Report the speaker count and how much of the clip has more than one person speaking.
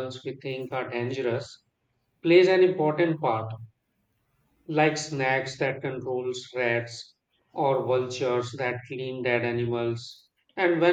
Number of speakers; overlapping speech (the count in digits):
1, no overlap